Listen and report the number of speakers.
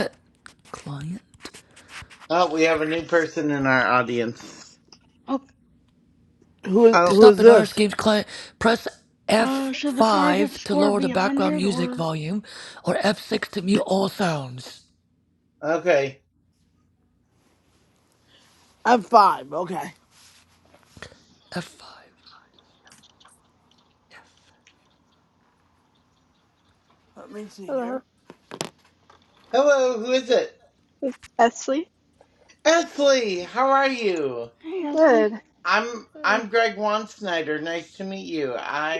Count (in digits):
5